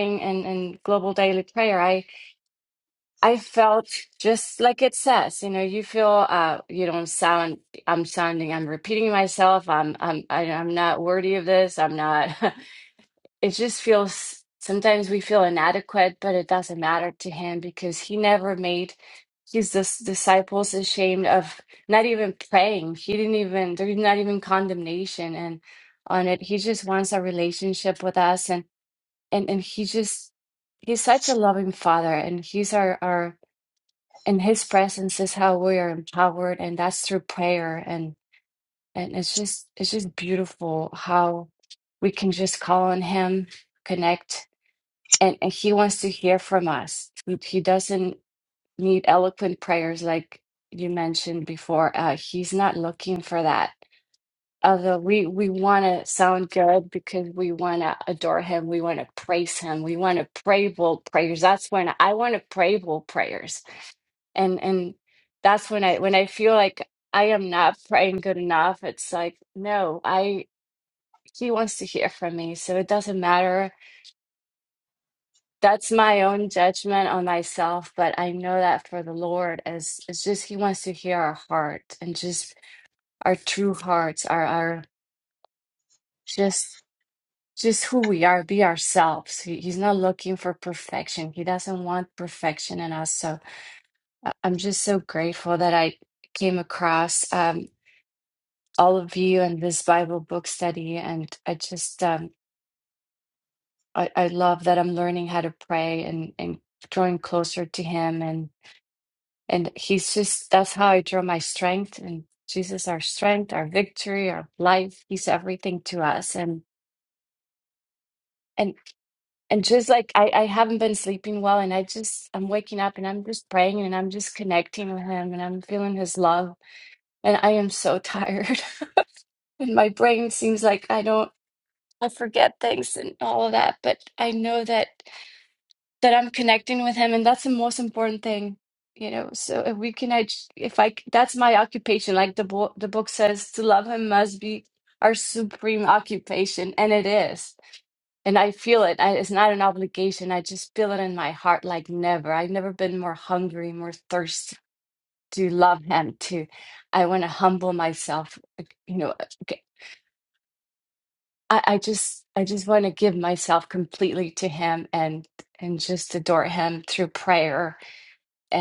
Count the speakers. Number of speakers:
1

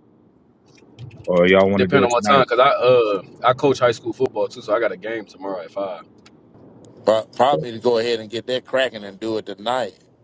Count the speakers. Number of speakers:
3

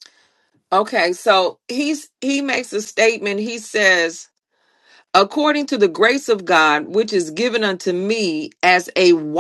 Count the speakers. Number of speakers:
1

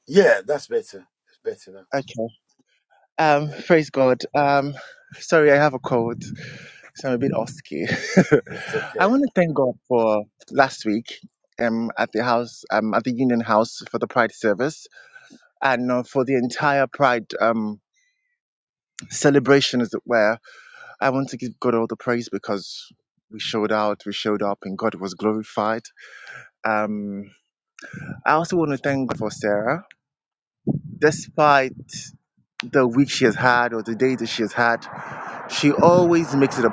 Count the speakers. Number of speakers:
2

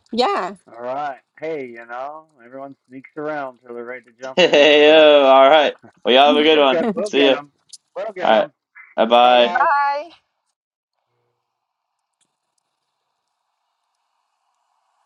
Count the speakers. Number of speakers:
3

